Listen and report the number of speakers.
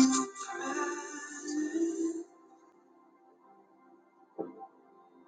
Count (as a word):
zero